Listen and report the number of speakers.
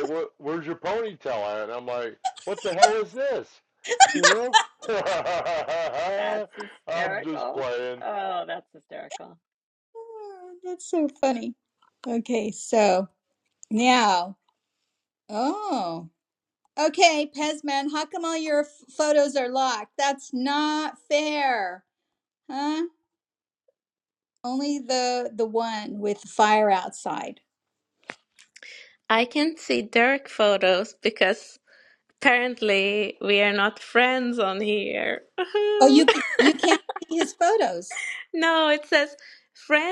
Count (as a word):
four